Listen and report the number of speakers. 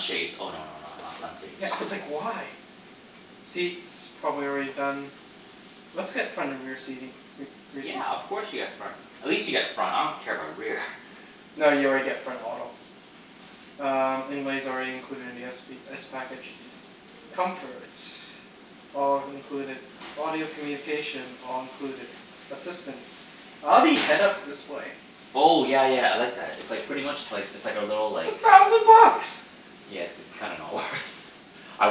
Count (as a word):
two